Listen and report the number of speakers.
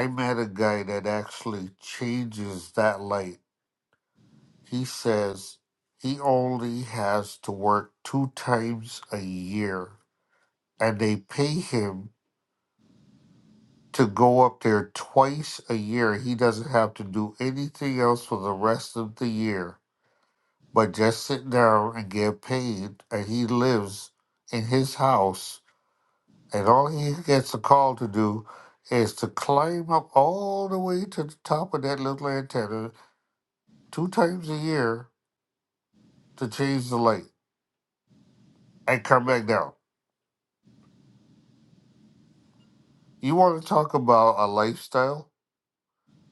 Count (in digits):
1